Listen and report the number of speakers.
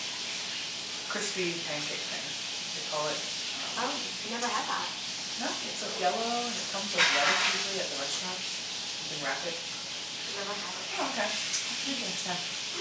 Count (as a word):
two